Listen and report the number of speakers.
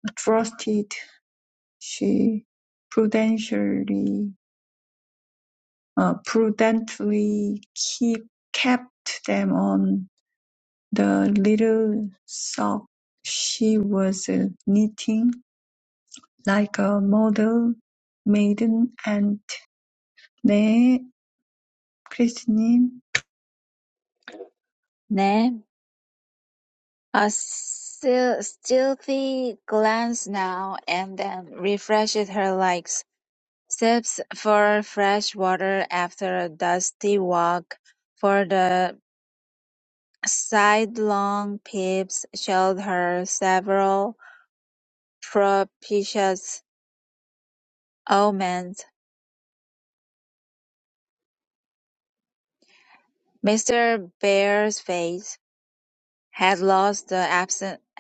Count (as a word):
two